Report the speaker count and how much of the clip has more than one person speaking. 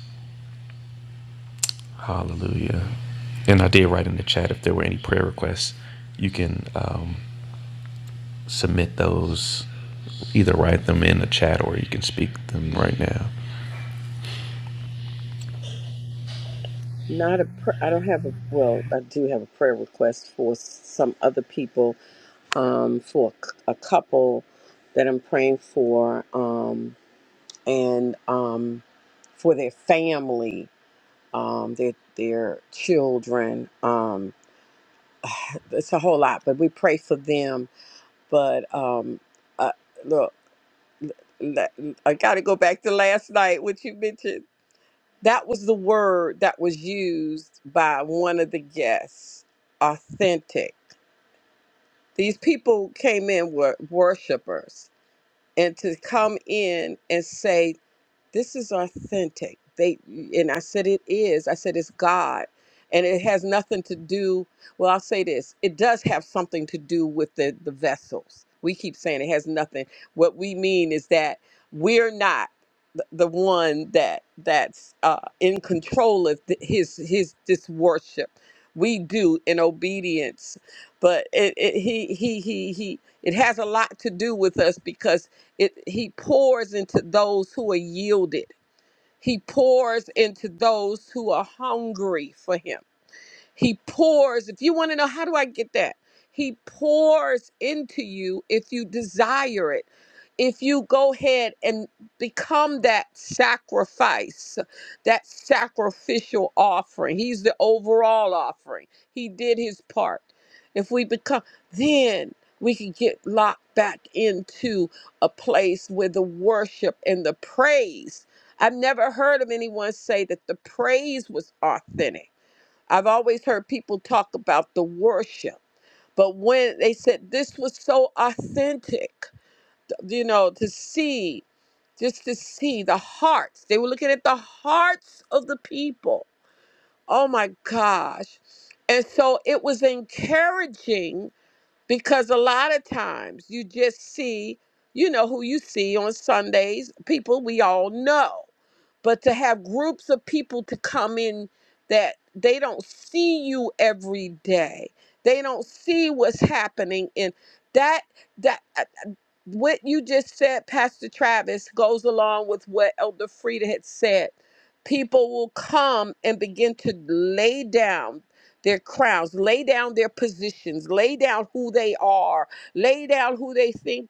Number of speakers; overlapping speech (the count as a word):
two, no overlap